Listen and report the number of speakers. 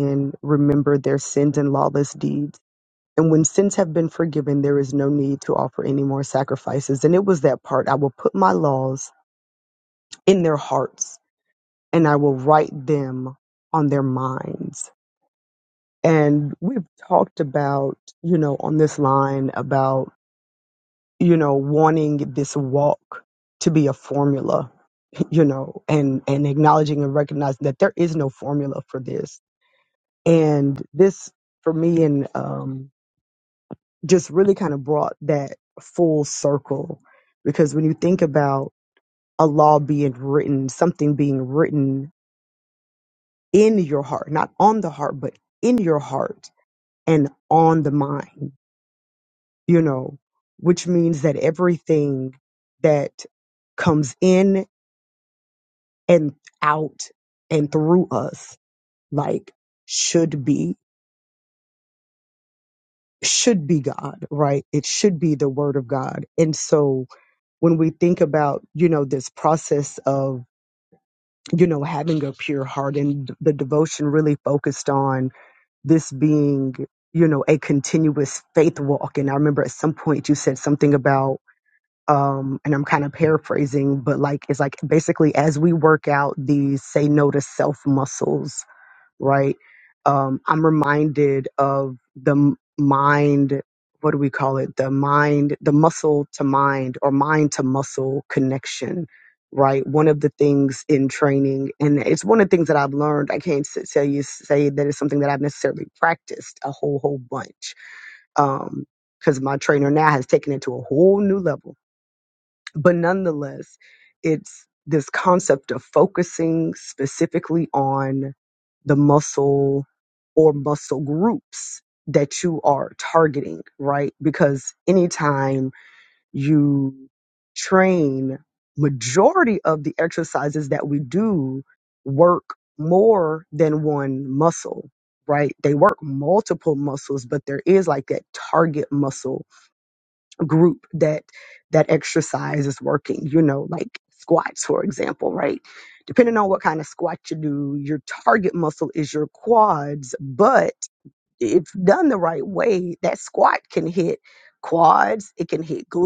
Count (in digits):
1